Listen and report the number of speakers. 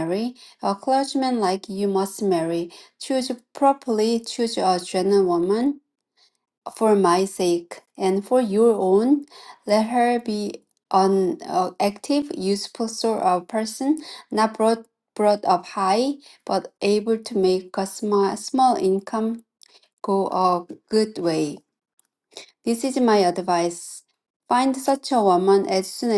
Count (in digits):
1